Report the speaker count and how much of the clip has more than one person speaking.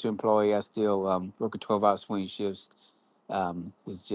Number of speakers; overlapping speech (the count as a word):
one, no overlap